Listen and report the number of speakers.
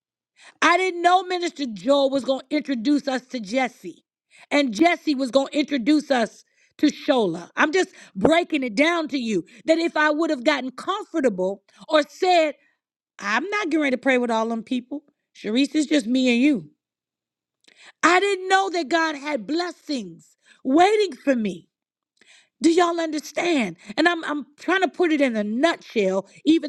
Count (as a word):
one